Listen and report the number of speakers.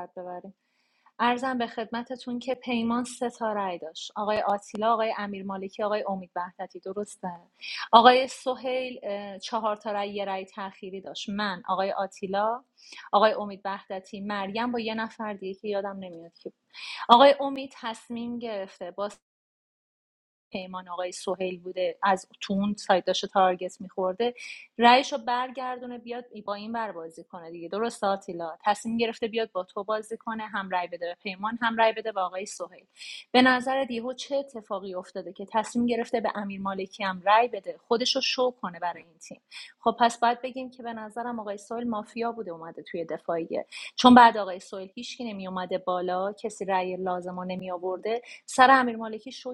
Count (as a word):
one